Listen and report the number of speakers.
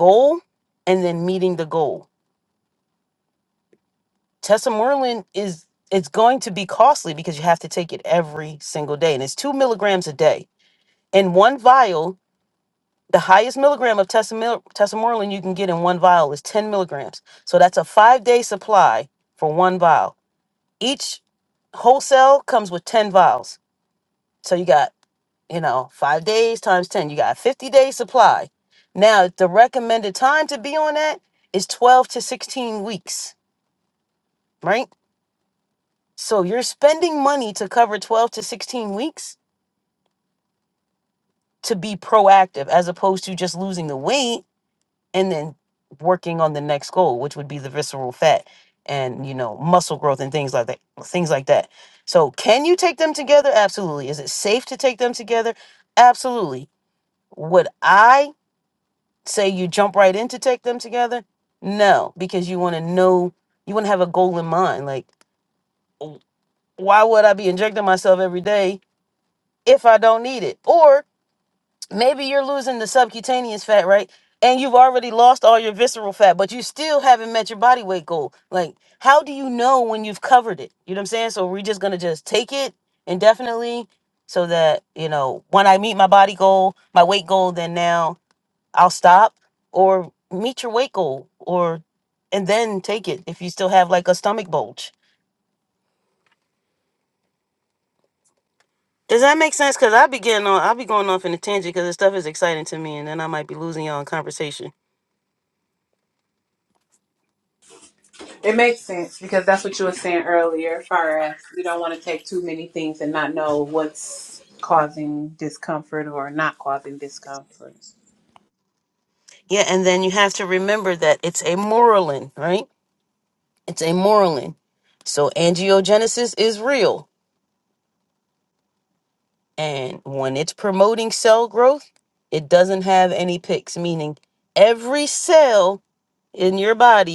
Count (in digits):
2